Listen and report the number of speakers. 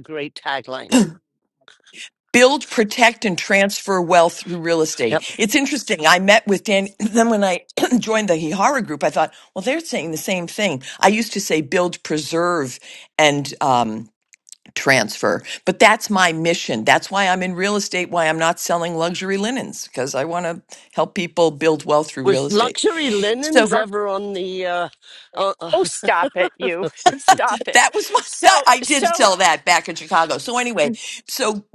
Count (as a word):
three